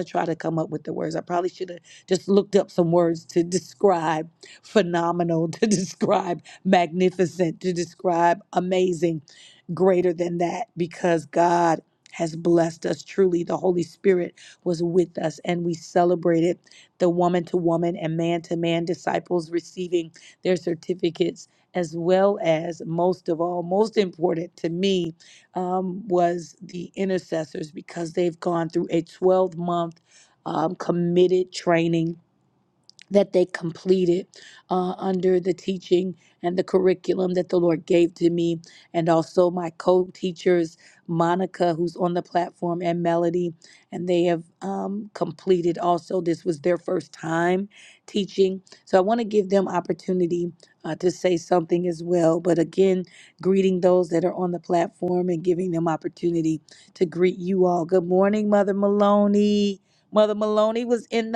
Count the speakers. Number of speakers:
1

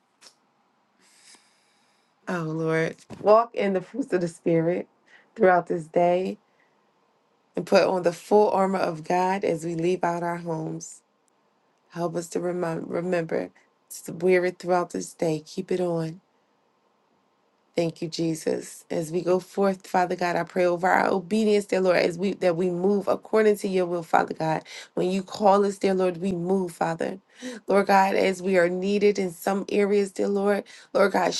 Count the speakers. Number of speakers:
1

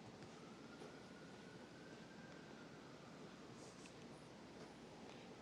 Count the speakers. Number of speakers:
0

